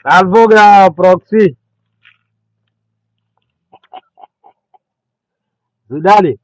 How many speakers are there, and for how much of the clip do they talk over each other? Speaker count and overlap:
one, no overlap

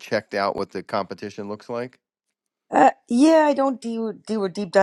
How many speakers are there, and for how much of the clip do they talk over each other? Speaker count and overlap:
two, no overlap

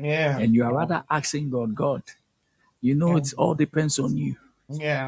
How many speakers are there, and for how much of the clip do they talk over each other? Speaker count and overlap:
two, about 6%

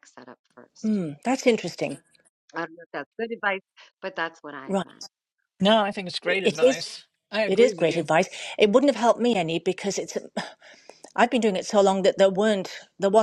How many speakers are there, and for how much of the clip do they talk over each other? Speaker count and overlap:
three, about 10%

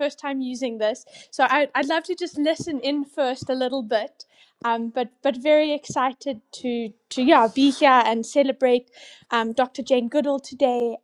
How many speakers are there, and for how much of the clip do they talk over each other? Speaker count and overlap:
one, no overlap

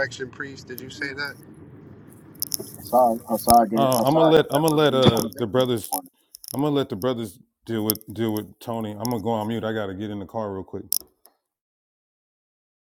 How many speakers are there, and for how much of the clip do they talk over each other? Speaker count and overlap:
three, about 17%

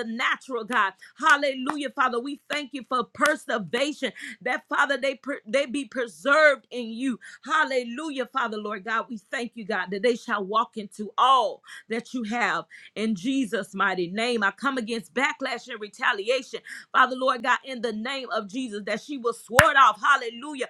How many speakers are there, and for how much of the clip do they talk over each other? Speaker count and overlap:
one, no overlap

